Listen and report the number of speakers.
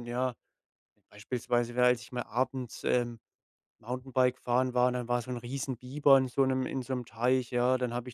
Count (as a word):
one